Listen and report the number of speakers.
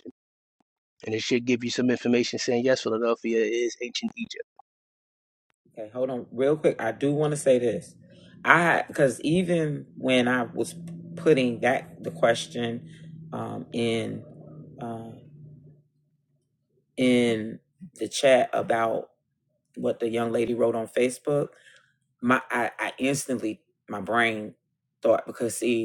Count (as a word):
two